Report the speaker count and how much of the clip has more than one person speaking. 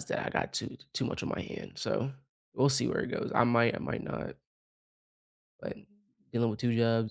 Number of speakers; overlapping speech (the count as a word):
one, no overlap